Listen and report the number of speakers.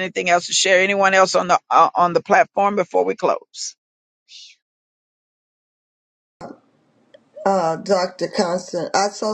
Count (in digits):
2